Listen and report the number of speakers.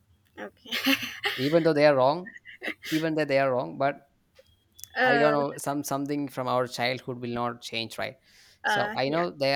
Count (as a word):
two